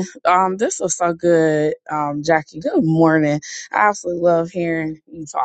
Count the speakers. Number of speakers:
one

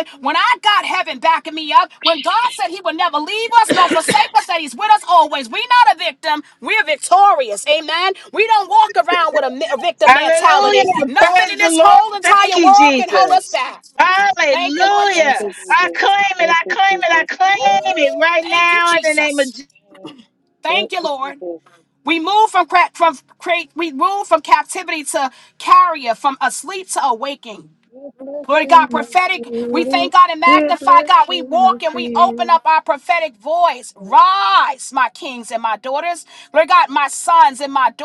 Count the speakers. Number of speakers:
three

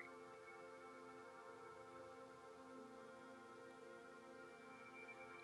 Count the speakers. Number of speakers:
zero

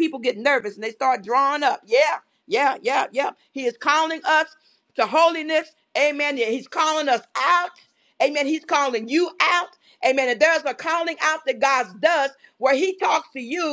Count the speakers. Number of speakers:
one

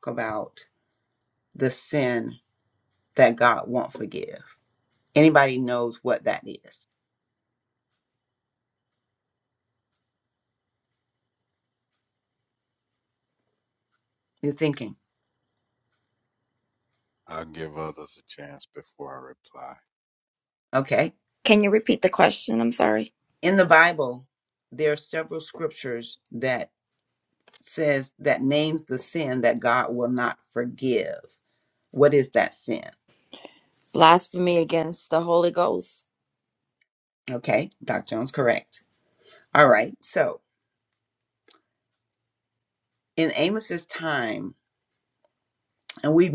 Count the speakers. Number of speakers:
three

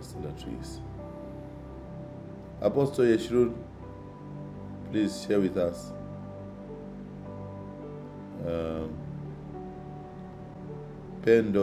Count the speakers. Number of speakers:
one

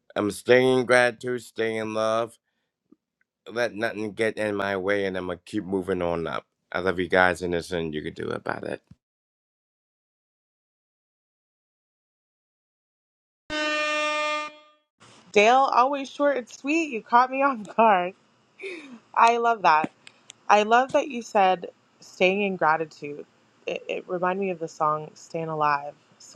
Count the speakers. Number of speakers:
two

